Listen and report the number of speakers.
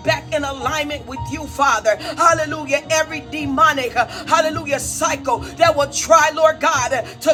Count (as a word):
one